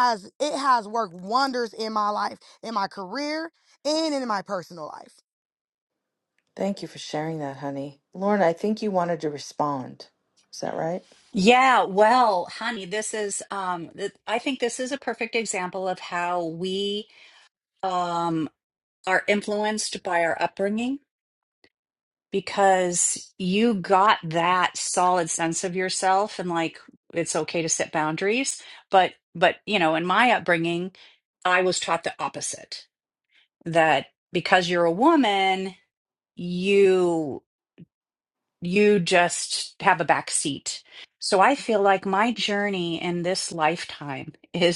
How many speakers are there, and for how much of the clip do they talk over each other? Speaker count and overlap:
3, no overlap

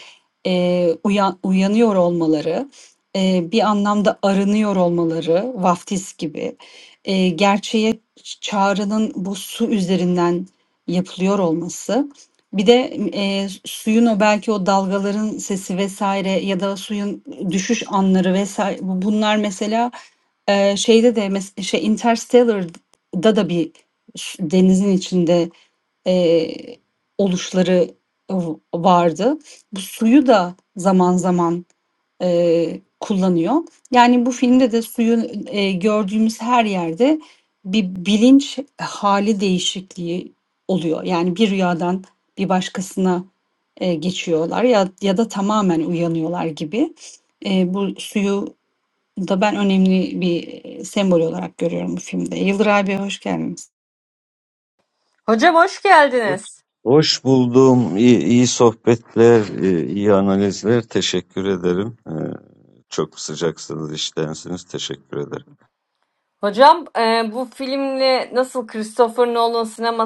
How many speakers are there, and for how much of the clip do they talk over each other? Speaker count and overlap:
3, under 1%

